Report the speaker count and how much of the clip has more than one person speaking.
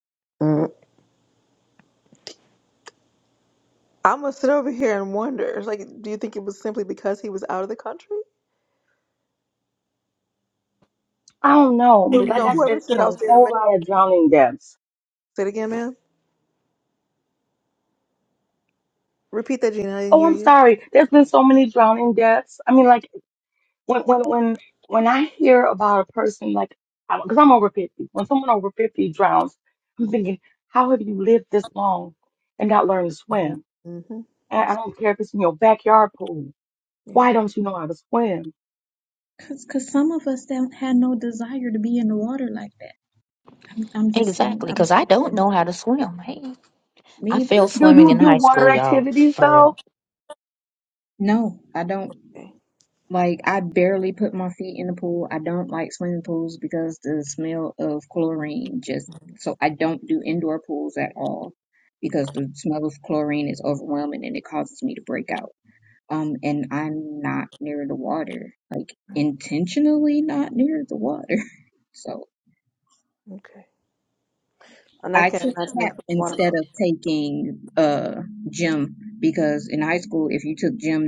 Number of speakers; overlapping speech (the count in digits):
4, about 9%